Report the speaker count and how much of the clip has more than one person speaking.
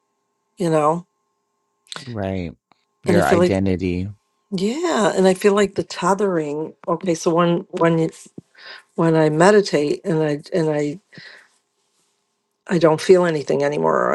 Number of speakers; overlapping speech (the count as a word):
two, about 3%